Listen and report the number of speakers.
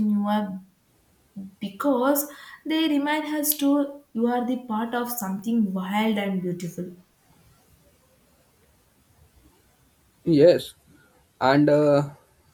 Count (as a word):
two